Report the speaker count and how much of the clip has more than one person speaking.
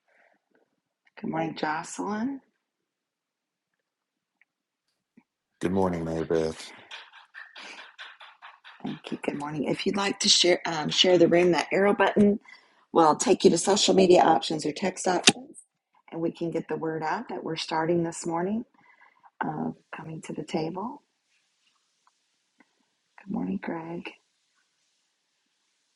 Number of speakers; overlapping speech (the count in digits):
2, no overlap